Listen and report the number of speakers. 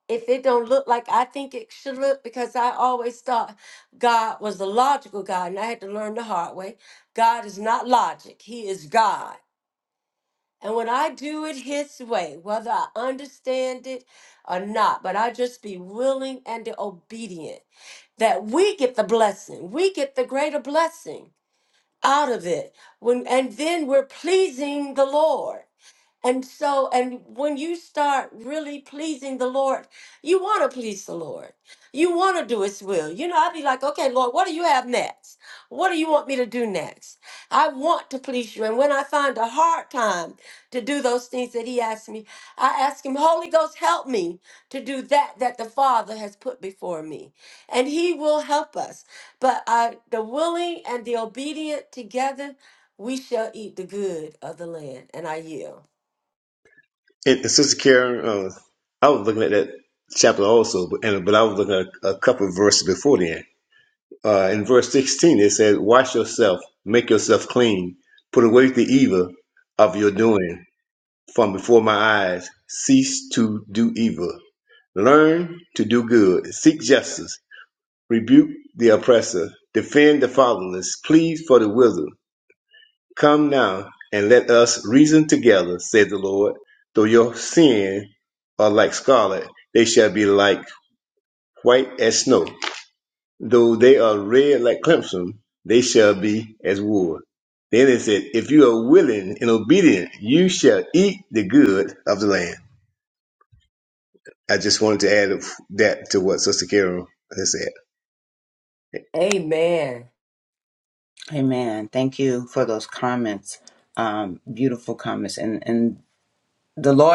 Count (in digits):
3